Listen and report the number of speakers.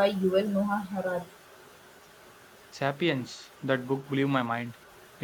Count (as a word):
two